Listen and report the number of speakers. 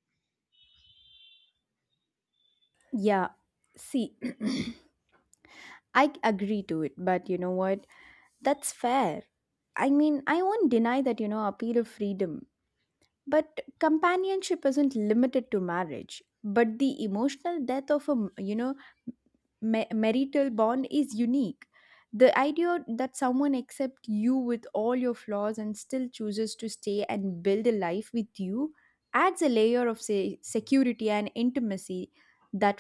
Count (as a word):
one